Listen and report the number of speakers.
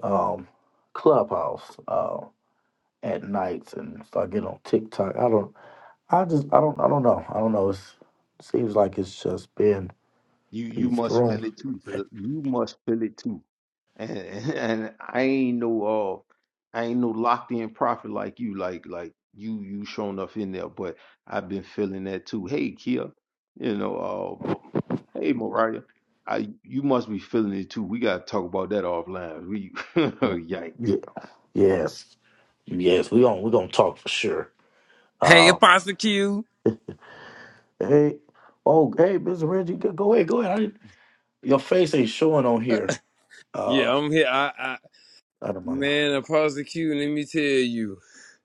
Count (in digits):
3